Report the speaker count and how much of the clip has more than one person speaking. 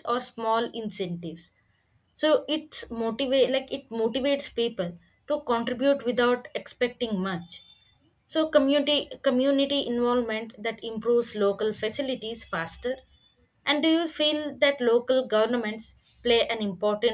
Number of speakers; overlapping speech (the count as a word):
one, no overlap